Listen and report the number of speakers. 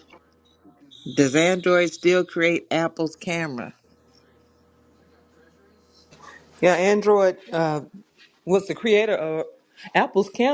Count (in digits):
2